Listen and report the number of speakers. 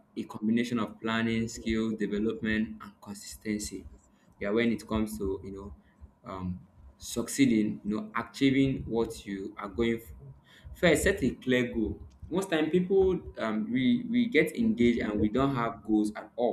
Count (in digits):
1